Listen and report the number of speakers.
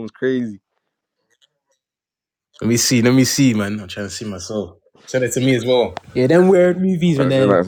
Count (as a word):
three